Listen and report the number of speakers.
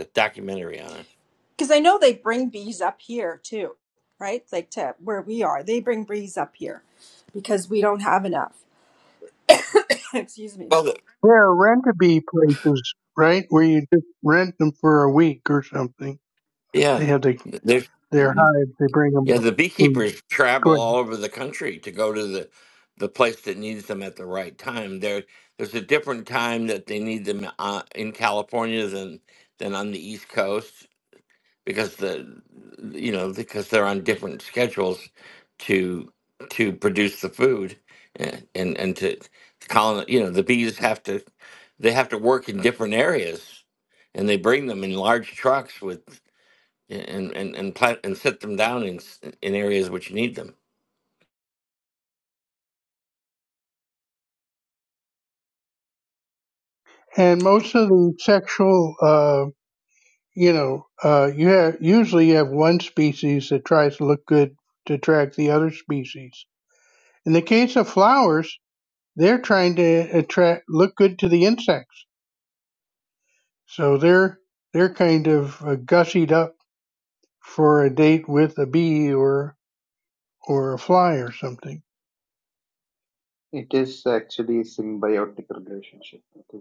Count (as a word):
four